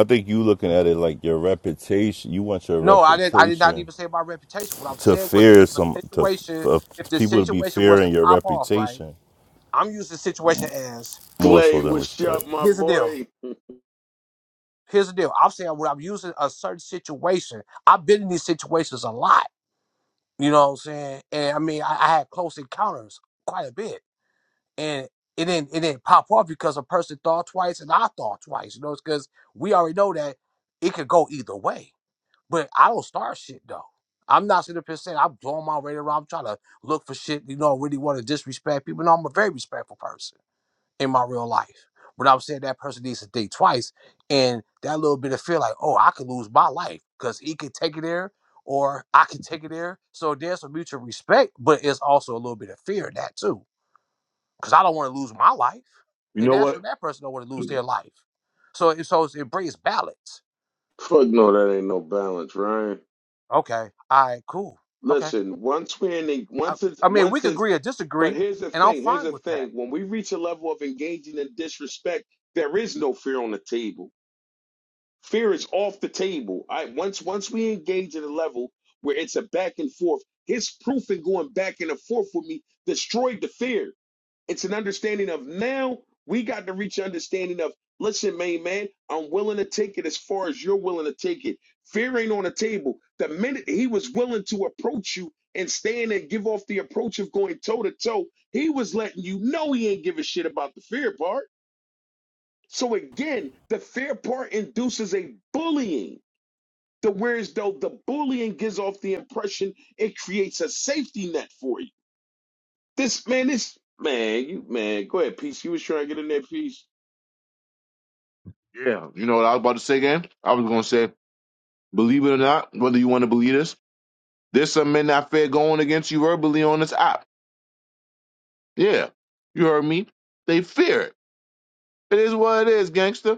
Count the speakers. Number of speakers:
four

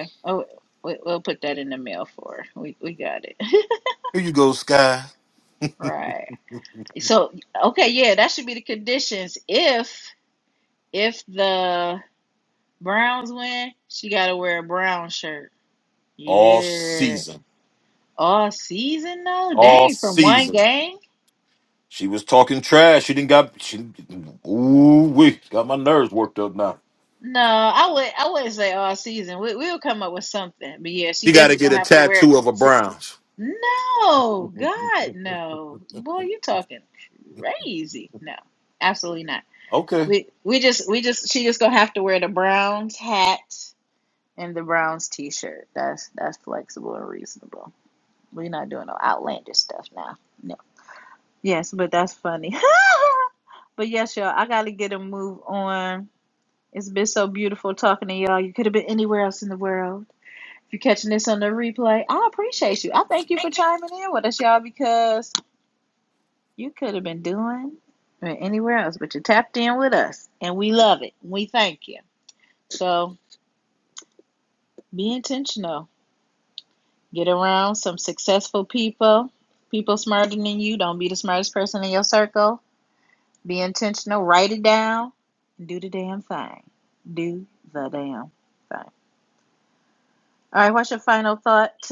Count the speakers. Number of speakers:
two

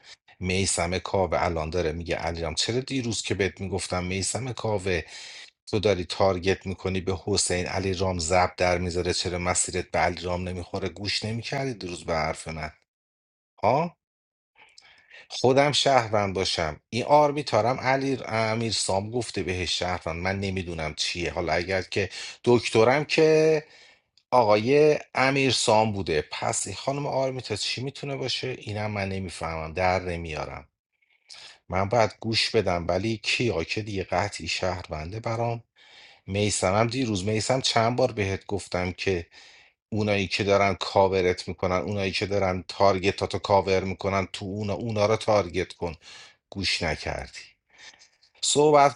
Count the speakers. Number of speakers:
one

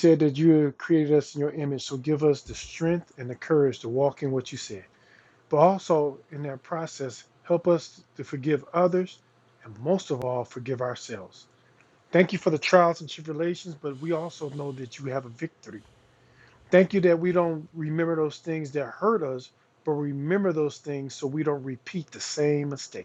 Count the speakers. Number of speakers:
one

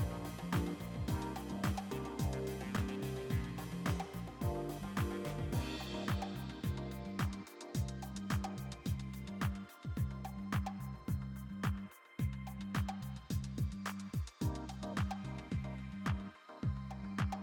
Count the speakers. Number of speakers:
zero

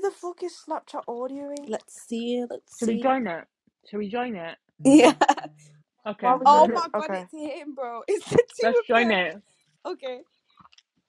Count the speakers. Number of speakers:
three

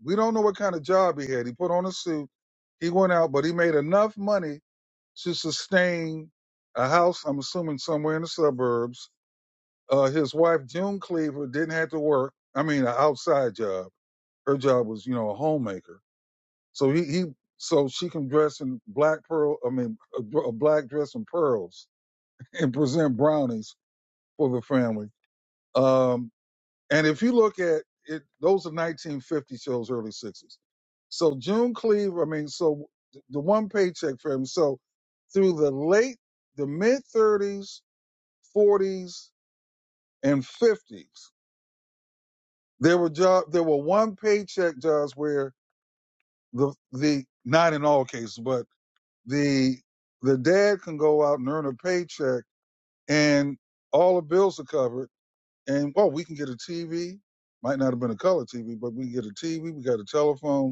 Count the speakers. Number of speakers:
one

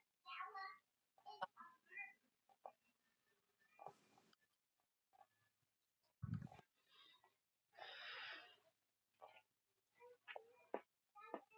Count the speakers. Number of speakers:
zero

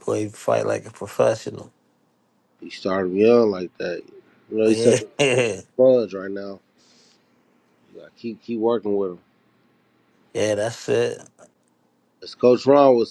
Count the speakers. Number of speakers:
two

